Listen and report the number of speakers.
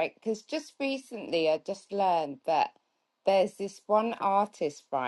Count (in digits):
1